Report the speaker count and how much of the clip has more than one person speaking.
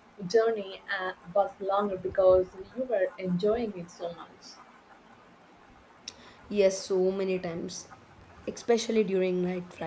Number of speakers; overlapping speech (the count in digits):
2, no overlap